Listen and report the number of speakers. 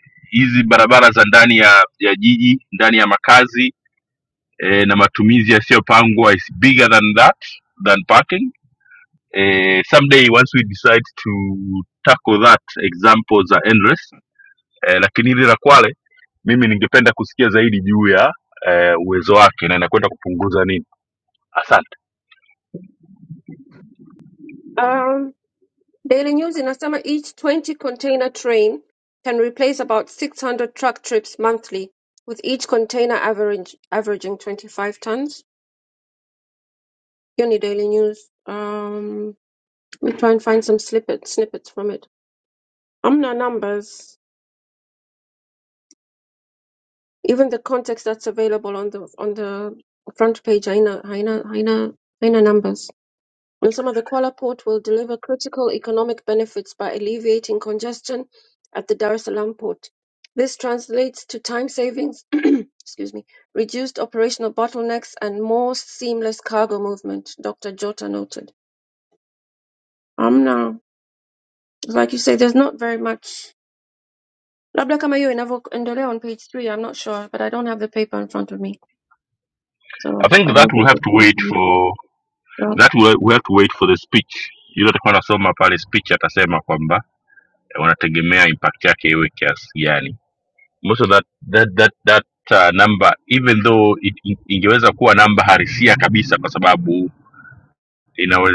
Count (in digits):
2